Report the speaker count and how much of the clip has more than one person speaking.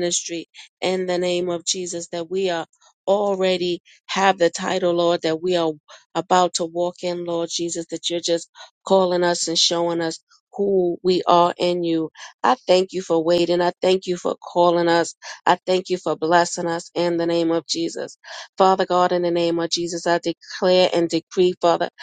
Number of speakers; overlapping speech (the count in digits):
1, no overlap